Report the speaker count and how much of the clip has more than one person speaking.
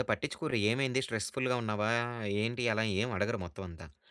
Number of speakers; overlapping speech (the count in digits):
1, no overlap